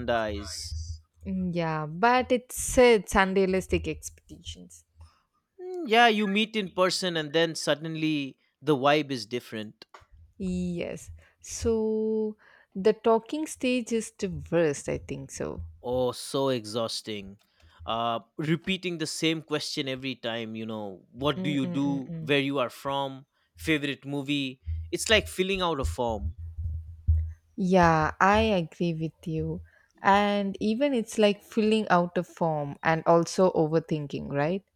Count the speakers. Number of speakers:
two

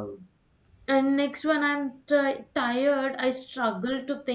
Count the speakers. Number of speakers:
one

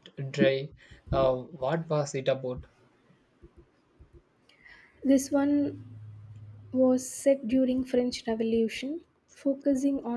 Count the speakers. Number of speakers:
two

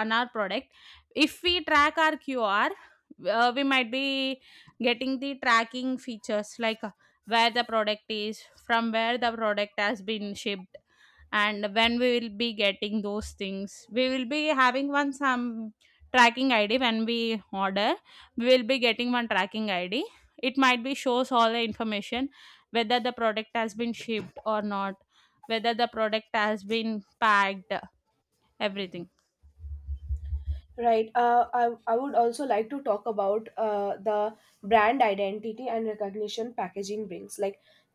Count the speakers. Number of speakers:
two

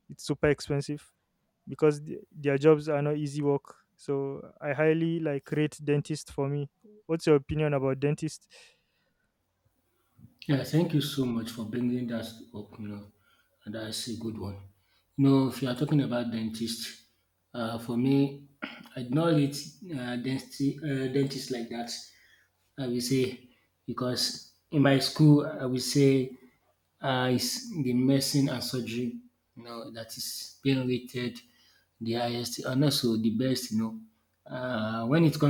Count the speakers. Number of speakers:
two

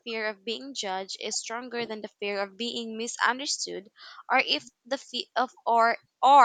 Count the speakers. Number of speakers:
one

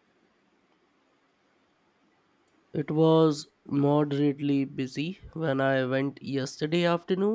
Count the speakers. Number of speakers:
one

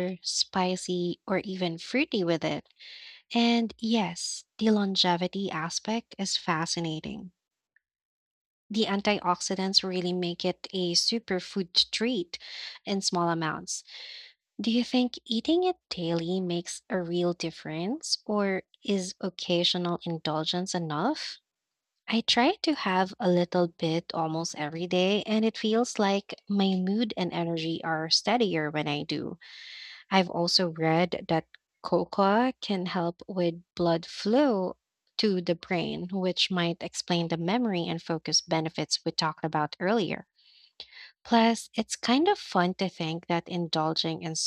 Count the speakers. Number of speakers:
one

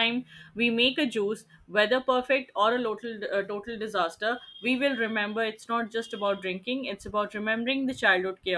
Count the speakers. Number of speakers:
one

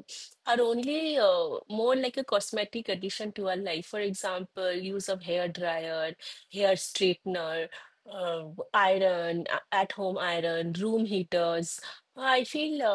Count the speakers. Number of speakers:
one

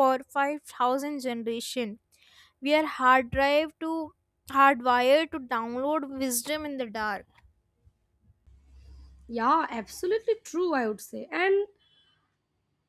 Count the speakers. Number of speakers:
two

